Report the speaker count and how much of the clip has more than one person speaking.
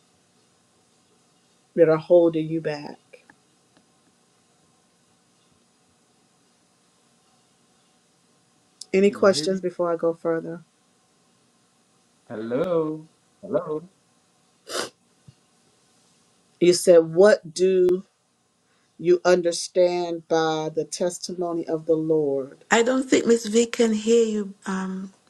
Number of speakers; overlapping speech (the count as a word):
three, about 2%